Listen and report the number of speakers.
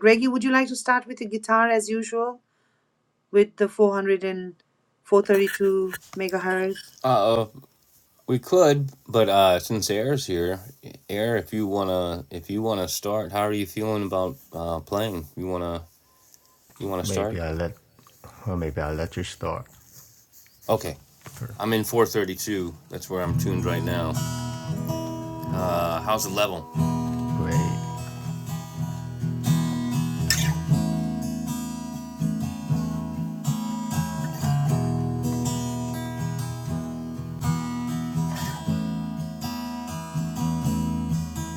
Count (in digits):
3